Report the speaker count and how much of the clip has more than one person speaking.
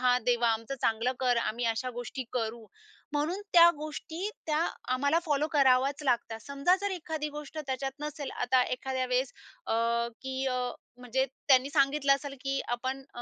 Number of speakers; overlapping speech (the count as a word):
one, no overlap